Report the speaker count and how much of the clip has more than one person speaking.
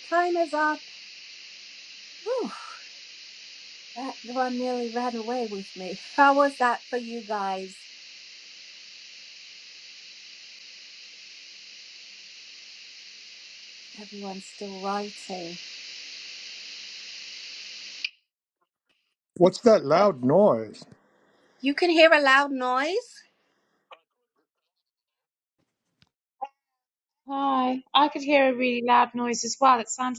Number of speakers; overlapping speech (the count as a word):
three, no overlap